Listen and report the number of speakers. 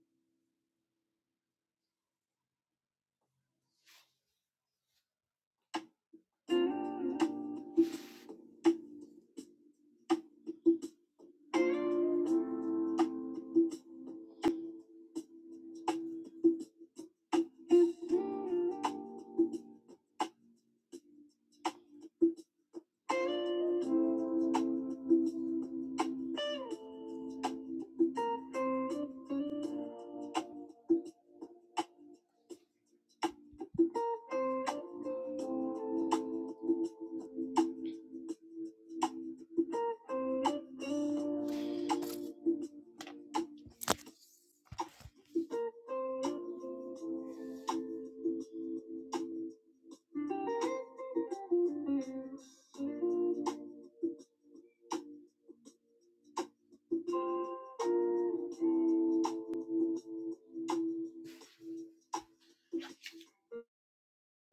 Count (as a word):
zero